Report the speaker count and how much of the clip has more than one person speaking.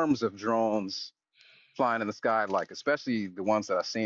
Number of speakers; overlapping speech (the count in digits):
1, no overlap